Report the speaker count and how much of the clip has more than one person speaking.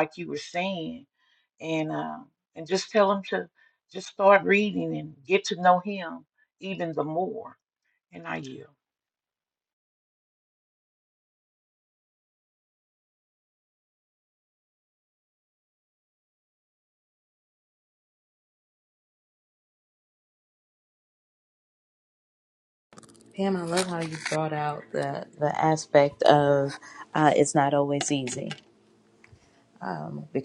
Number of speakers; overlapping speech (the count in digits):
2, no overlap